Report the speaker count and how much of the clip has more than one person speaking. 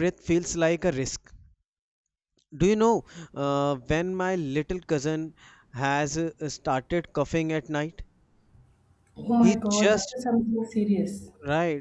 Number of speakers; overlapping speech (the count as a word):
two, about 6%